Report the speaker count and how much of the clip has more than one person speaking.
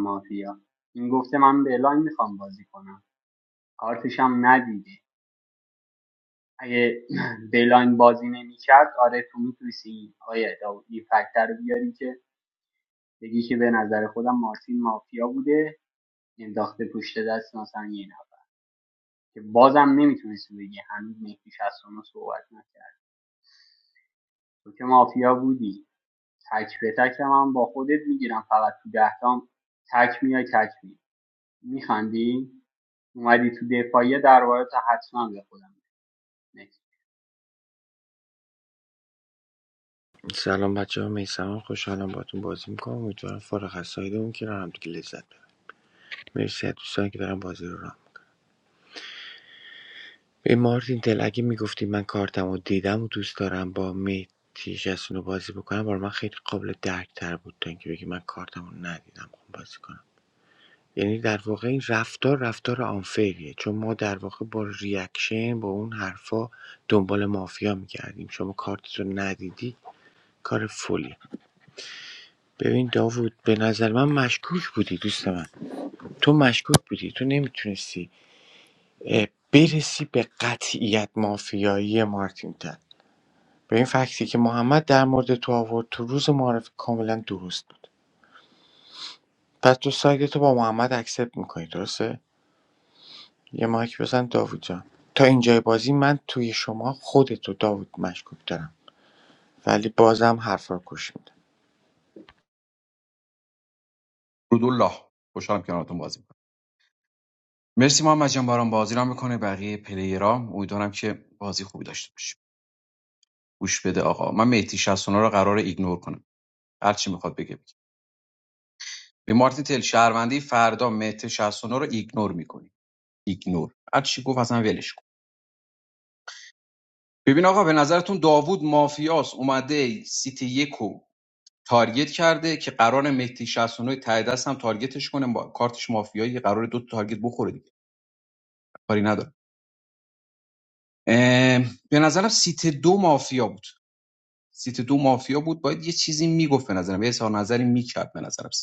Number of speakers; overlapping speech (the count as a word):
three, no overlap